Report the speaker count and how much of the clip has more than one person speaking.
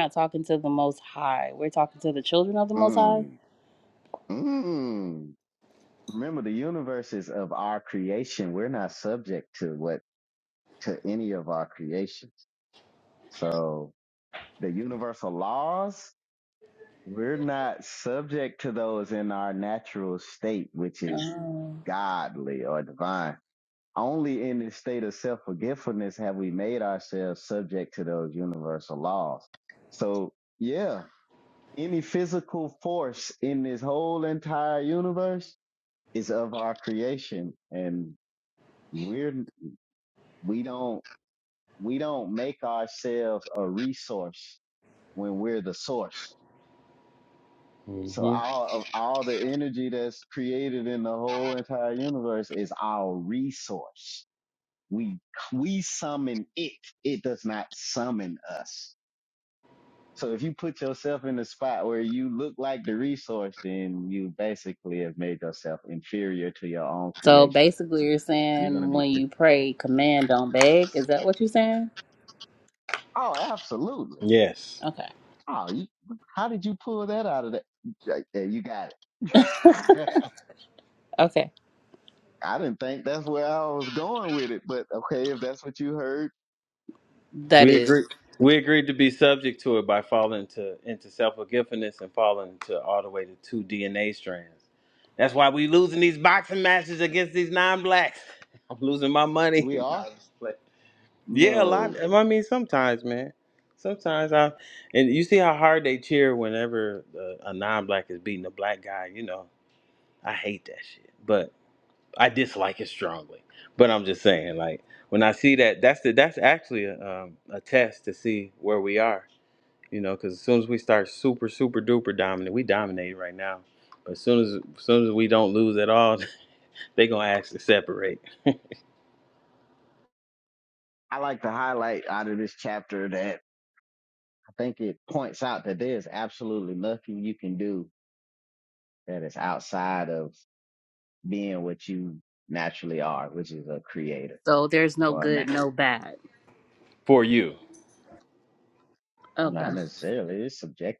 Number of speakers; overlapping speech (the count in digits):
3, about 3%